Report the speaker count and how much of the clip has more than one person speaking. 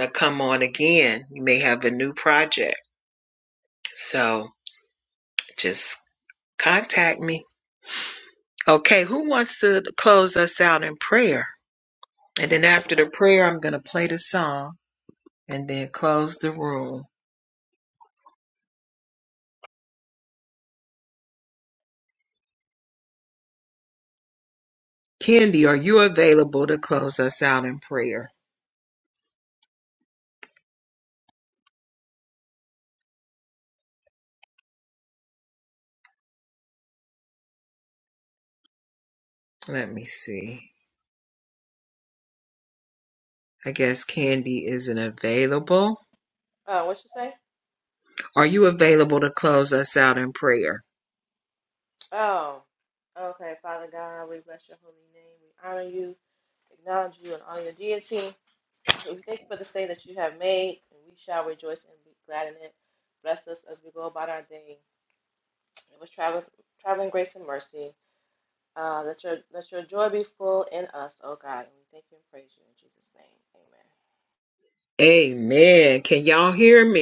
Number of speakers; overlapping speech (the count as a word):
two, no overlap